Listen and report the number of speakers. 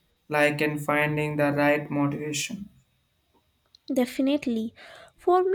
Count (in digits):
2